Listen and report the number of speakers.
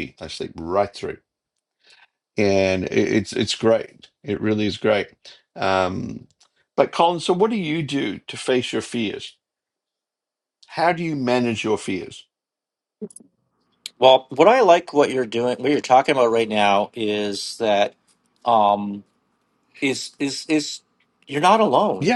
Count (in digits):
2